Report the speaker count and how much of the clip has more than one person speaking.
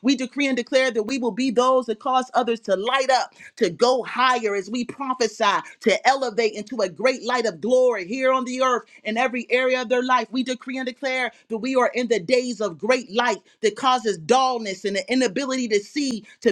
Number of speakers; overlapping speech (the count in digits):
1, no overlap